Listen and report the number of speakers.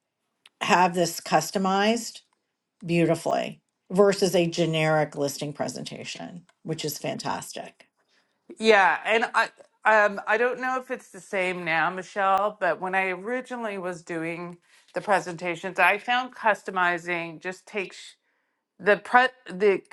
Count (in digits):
2